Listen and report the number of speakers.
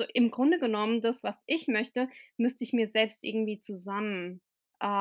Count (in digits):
1